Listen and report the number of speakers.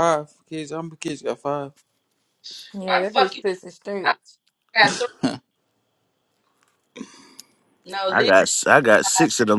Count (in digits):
4